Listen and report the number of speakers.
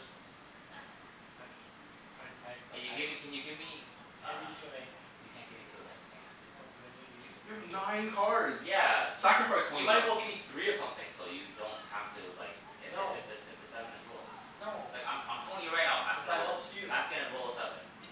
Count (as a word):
three